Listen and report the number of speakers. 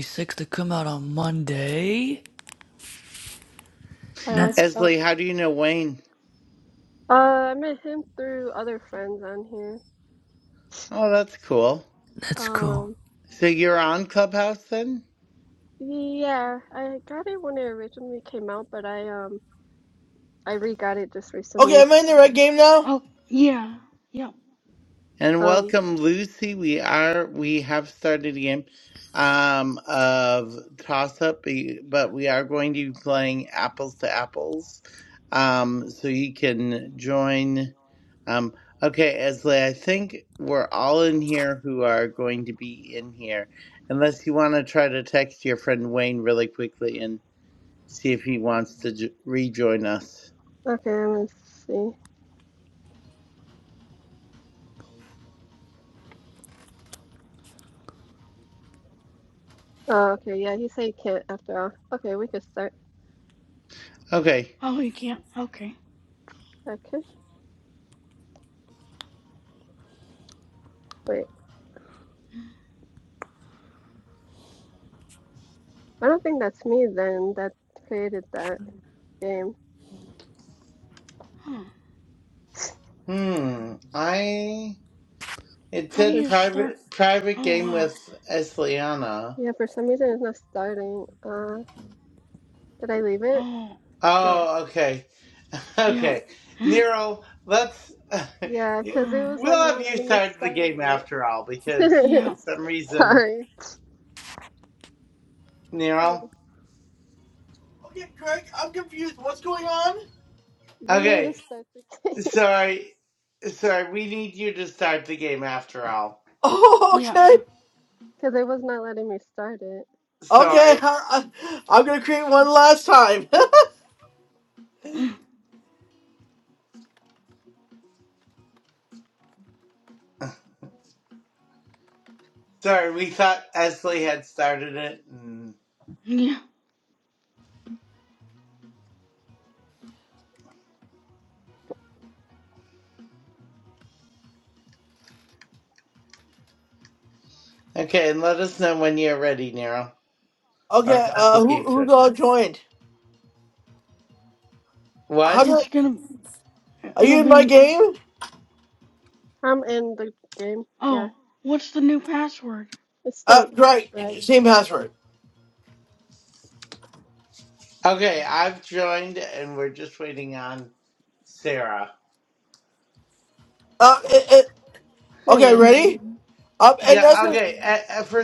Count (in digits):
5